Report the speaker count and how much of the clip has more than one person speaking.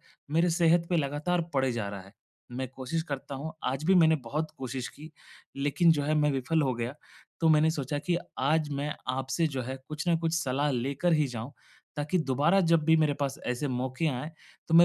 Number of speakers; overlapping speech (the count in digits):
1, no overlap